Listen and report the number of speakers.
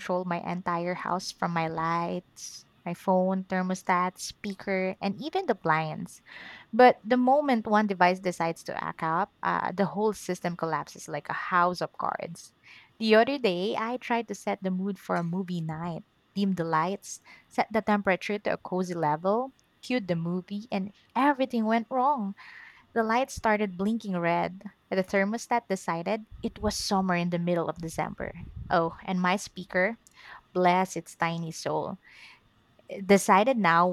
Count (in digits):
1